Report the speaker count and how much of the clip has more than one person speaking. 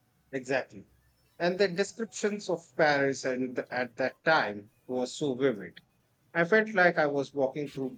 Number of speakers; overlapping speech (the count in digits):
1, no overlap